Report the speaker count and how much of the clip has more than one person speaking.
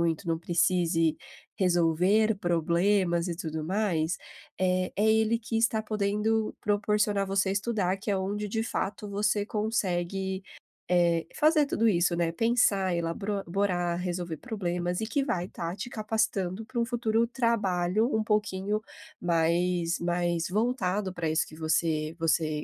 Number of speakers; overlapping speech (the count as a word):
one, no overlap